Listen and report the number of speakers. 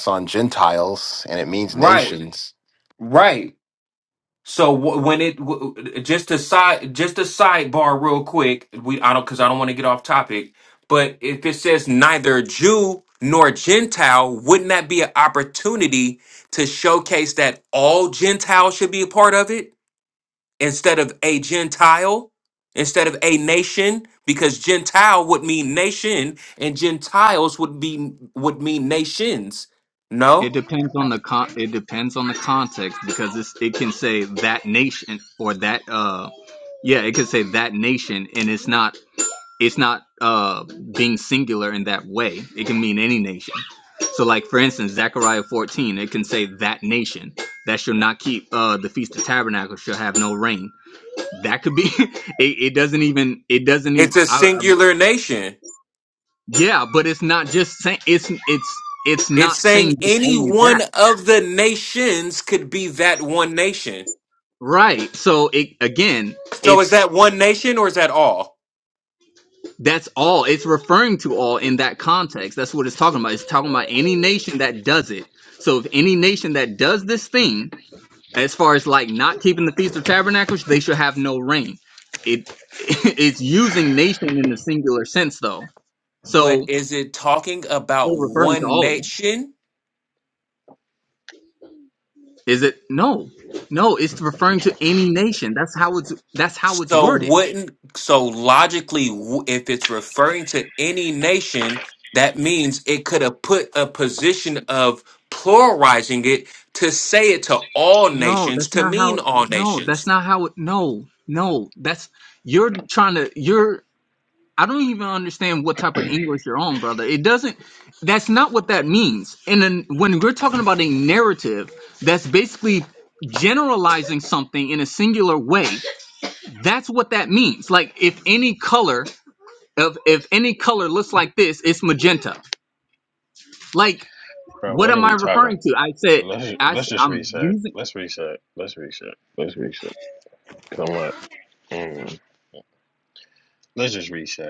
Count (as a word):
four